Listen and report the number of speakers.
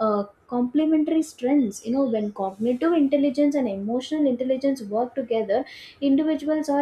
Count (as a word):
one